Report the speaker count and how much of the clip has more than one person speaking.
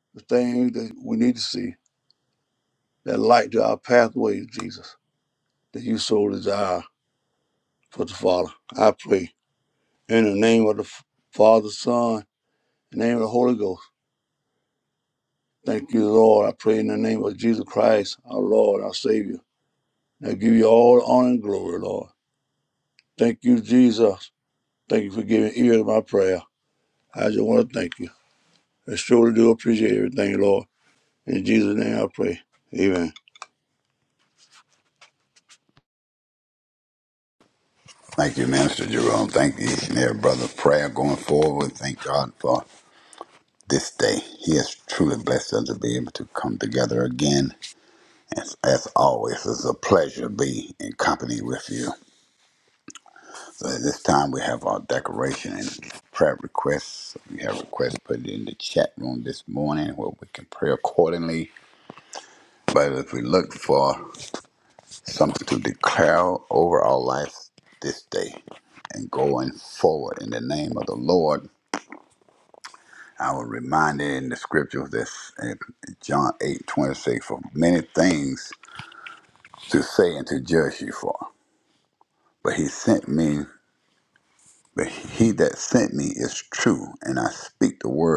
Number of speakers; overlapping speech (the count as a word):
two, no overlap